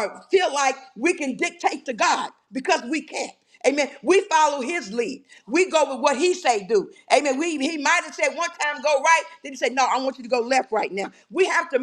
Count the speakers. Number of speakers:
1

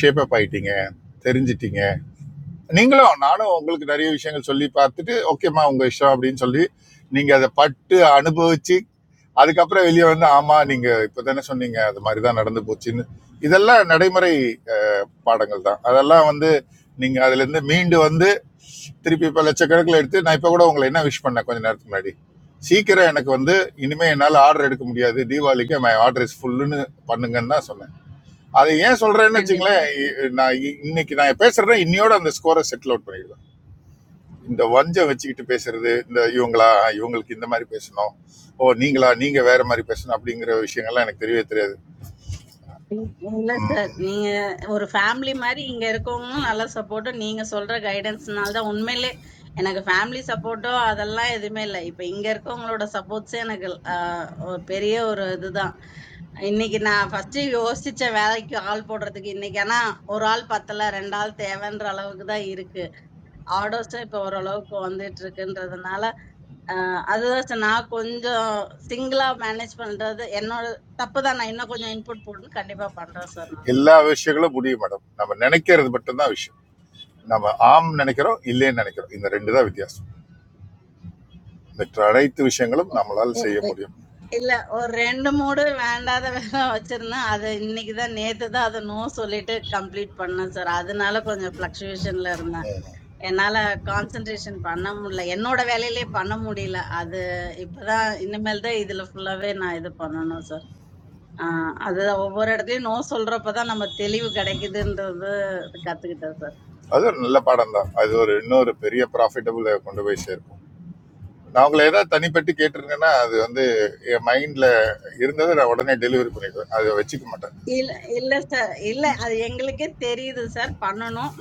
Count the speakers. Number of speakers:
2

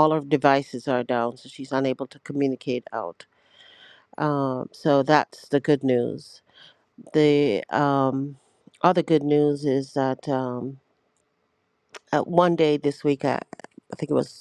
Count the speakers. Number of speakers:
1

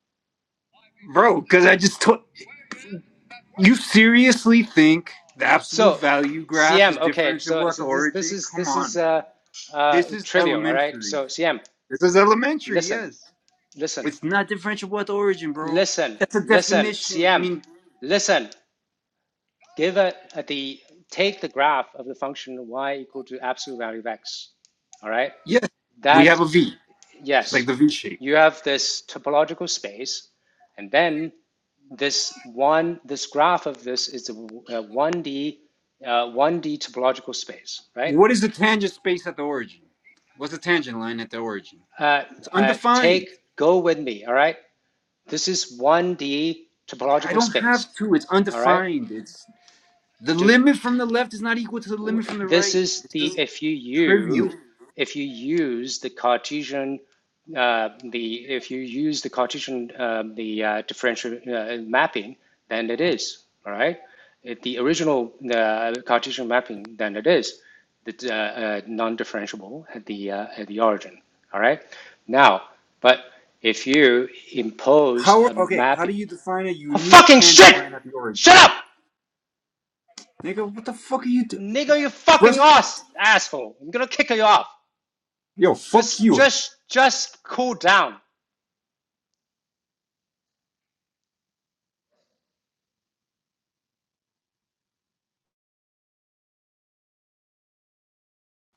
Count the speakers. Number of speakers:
2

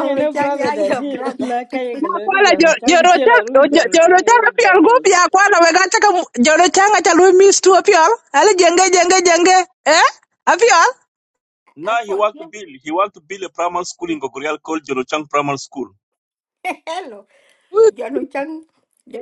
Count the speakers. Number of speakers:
4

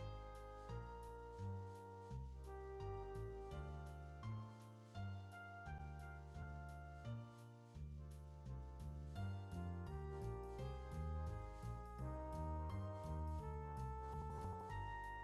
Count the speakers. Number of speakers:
0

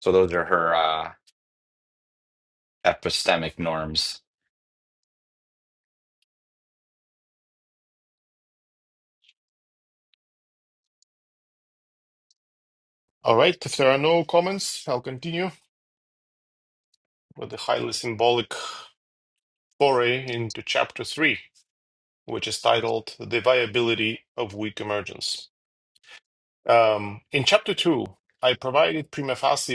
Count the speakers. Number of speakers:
2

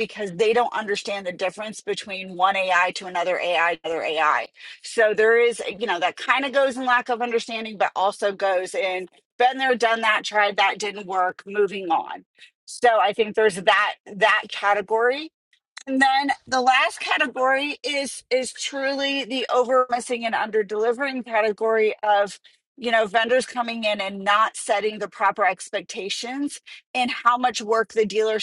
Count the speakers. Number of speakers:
1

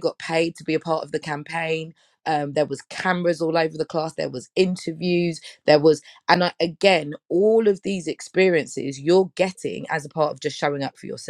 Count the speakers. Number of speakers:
1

